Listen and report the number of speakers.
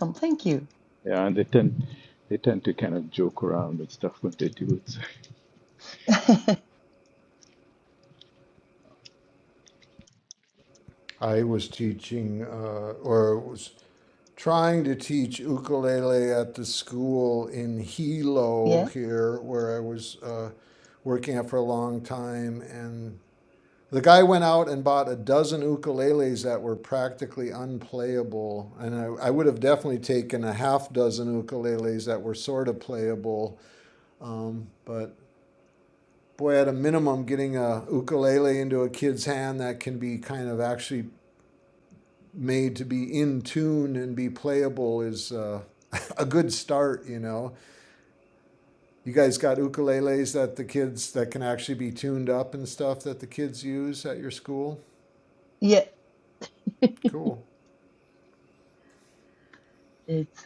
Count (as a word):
three